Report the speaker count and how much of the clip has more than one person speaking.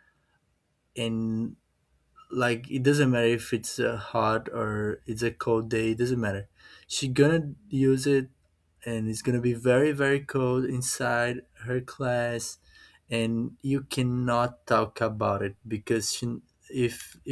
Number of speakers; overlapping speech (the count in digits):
1, no overlap